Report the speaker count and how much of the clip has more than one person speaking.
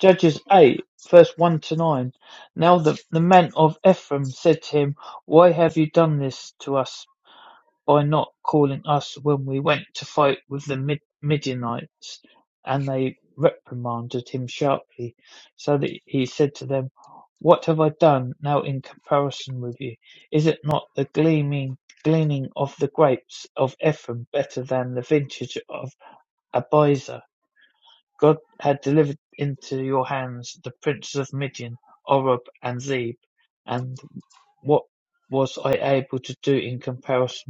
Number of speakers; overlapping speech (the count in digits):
1, no overlap